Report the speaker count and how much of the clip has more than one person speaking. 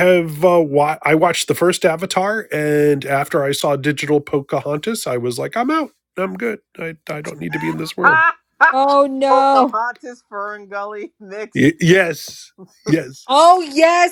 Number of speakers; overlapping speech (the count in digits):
3, about 3%